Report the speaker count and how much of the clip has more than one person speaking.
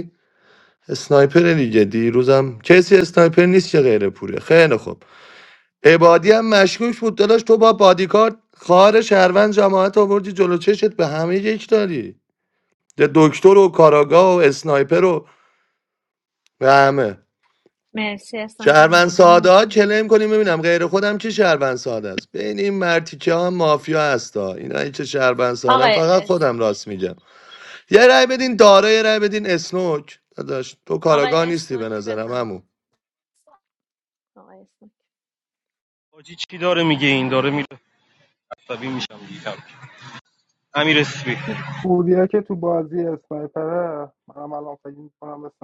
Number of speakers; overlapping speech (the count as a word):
four, about 7%